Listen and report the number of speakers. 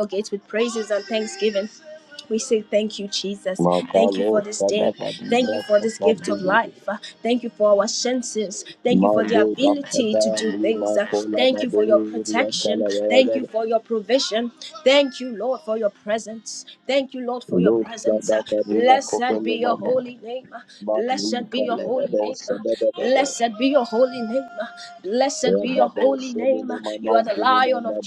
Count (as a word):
two